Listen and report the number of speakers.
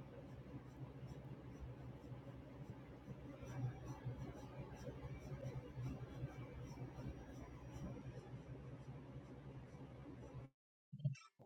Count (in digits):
0